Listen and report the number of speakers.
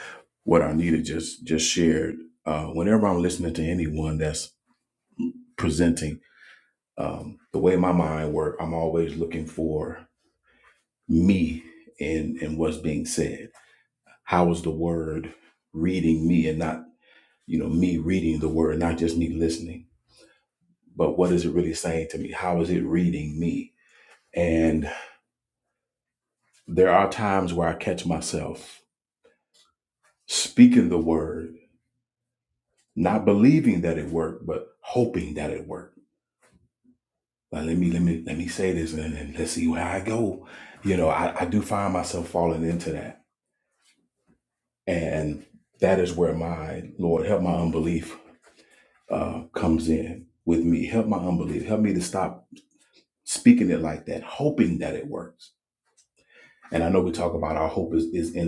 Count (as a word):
one